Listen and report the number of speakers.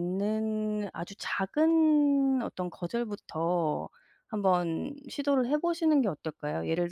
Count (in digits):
1